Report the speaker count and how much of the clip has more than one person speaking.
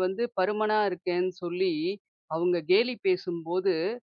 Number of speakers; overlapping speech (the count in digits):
1, no overlap